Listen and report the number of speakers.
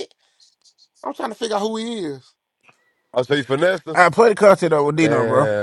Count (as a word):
three